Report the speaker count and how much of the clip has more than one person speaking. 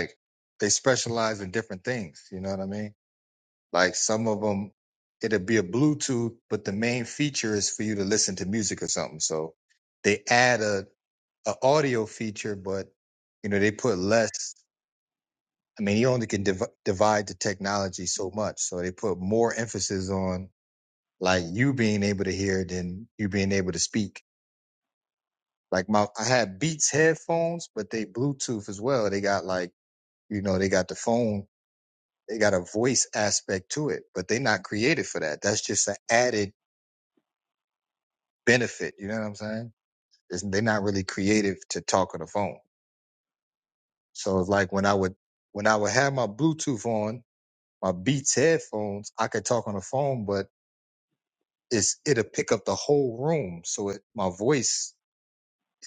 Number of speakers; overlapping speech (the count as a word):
one, no overlap